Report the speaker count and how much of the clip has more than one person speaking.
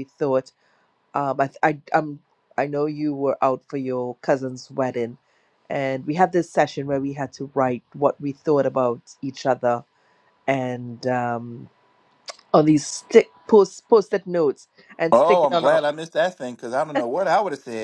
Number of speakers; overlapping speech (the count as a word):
two, about 4%